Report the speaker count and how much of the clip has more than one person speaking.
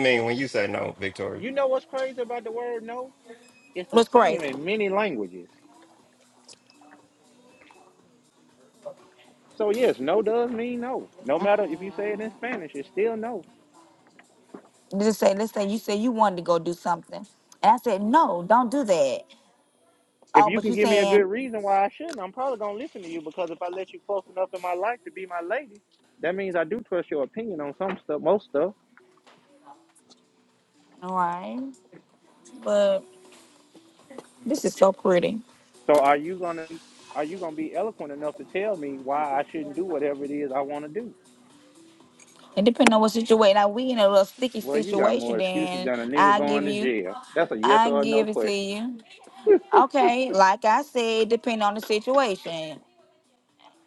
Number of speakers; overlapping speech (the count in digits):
3, about 9%